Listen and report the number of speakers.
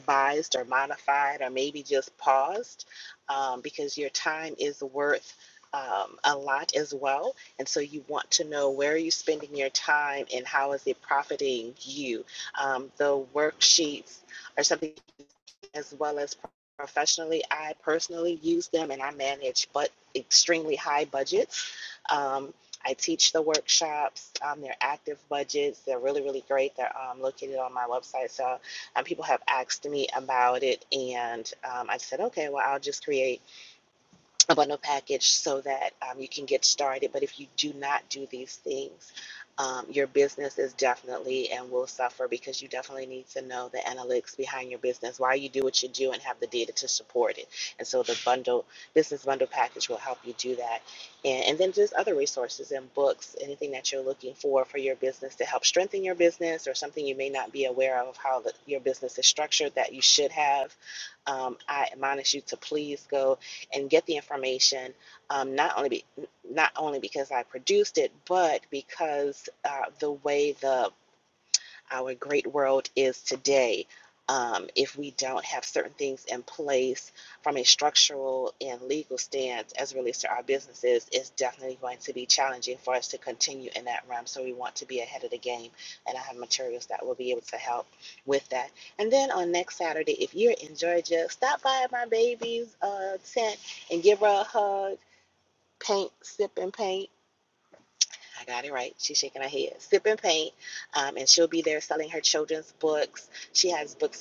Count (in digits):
1